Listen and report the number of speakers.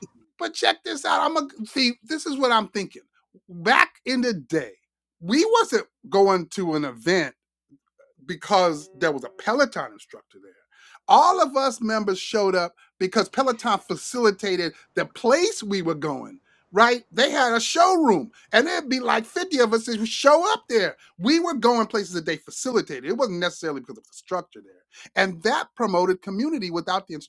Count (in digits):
1